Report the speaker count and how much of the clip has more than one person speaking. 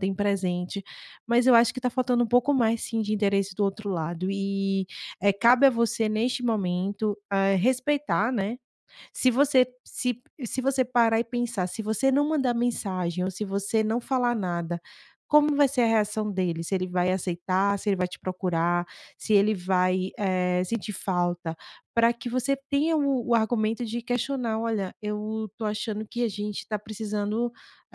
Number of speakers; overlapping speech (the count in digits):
1, no overlap